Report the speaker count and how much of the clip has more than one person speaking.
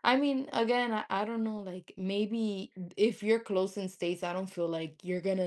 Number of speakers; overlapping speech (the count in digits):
1, no overlap